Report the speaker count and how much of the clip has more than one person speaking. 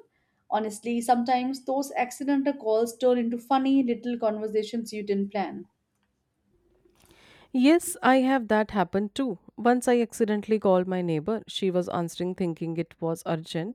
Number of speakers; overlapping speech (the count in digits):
2, no overlap